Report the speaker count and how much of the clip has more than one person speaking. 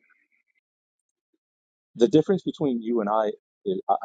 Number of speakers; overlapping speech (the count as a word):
one, no overlap